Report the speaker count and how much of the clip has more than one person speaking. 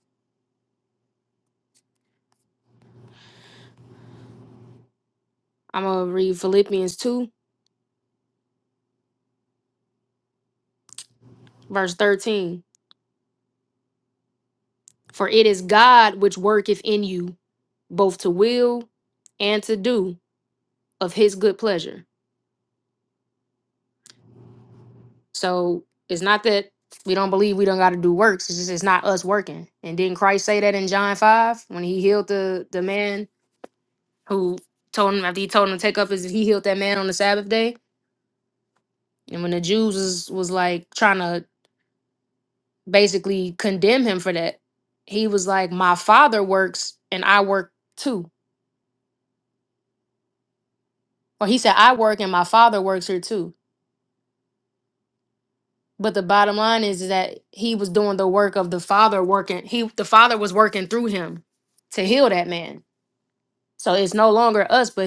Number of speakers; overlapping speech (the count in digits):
1, no overlap